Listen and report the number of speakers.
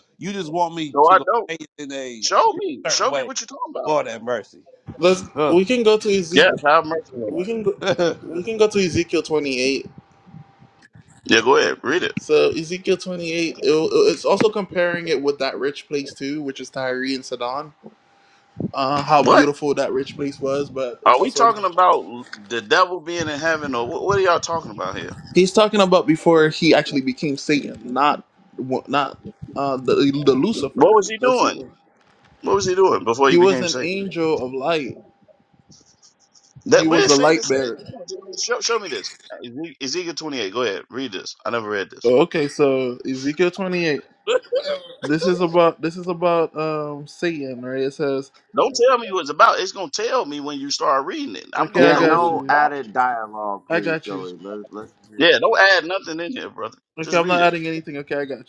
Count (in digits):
4